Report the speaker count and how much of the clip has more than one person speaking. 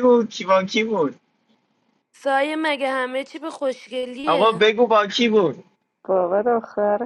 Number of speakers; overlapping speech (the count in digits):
3, about 4%